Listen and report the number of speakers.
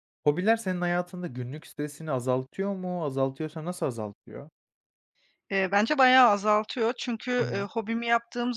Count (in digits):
2